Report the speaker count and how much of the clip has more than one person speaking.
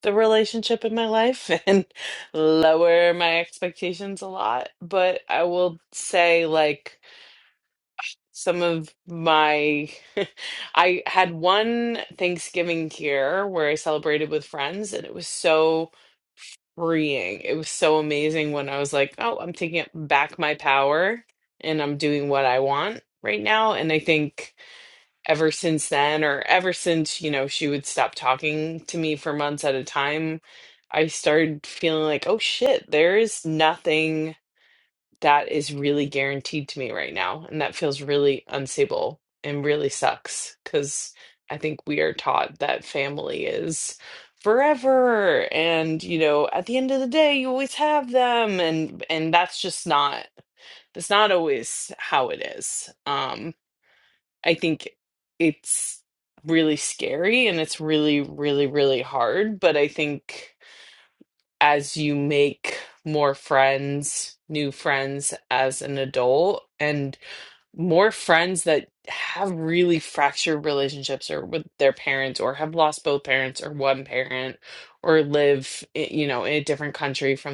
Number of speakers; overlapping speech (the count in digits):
1, no overlap